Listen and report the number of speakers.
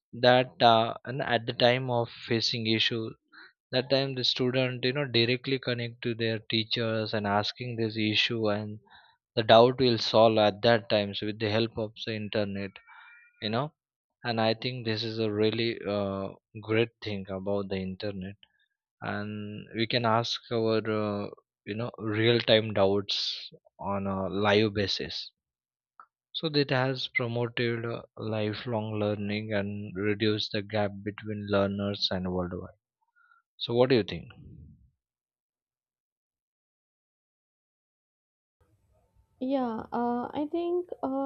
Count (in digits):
2